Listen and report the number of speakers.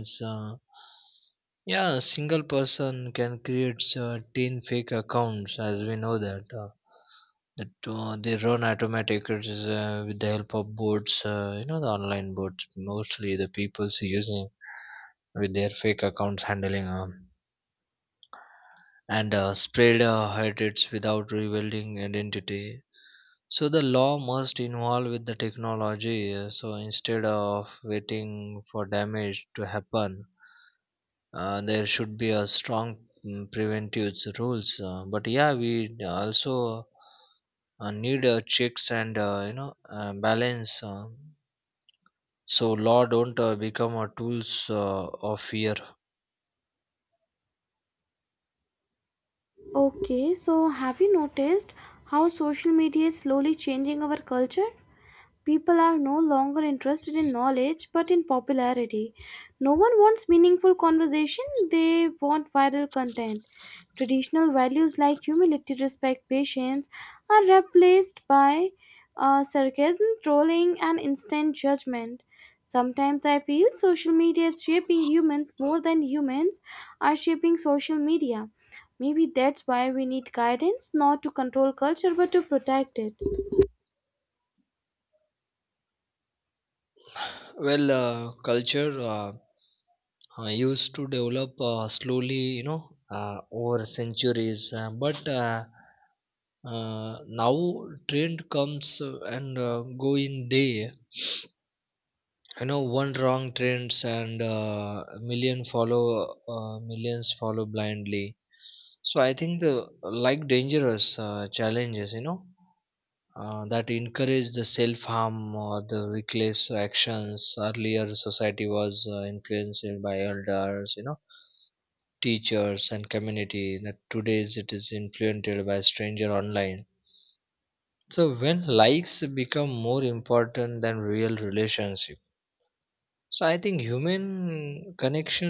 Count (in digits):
2